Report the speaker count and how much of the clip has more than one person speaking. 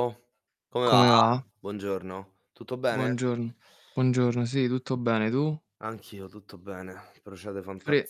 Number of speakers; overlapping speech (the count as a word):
two, about 8%